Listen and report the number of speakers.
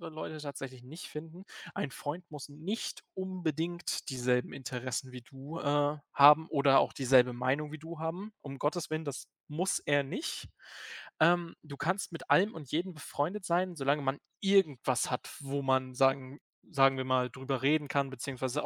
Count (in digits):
1